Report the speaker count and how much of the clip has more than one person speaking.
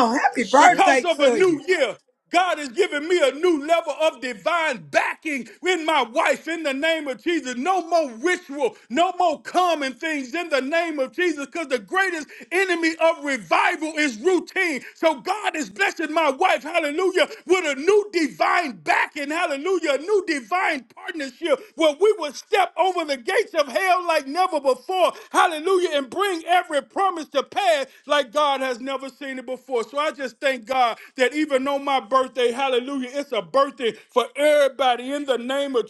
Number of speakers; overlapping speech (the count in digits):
2, about 3%